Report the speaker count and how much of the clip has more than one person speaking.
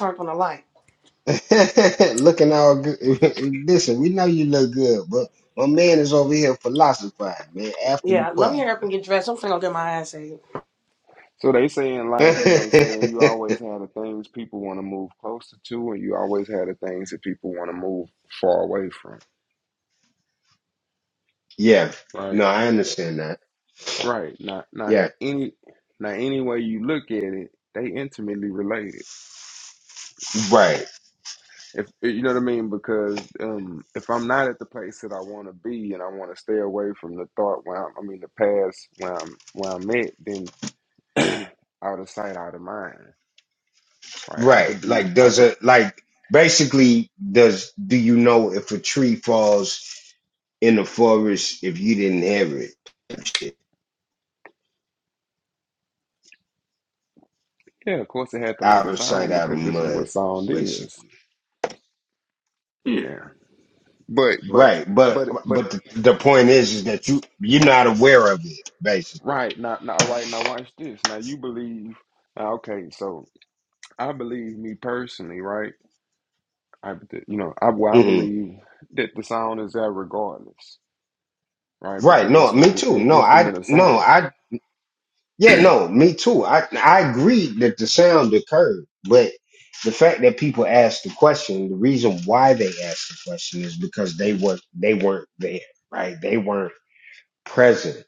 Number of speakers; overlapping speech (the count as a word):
three, about 7%